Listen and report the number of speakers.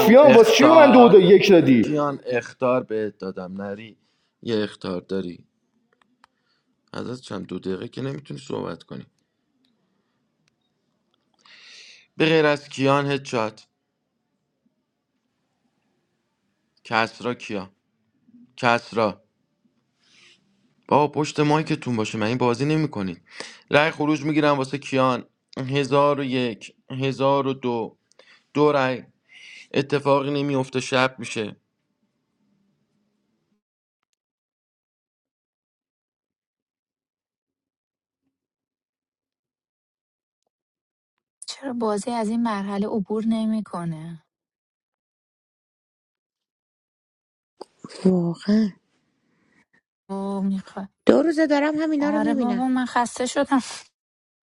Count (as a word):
four